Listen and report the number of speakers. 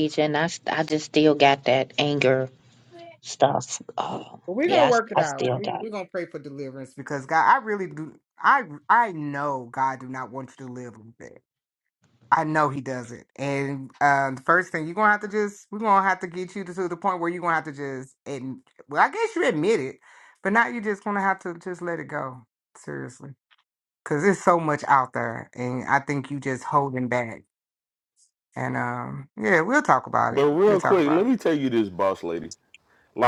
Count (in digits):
3